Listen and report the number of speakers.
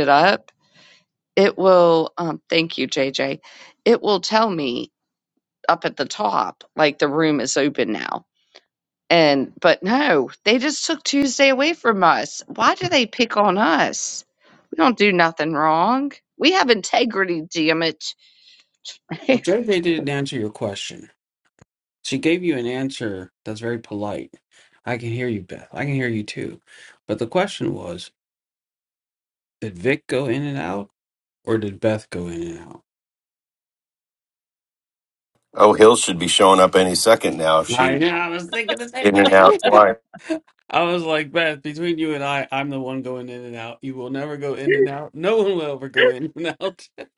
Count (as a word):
three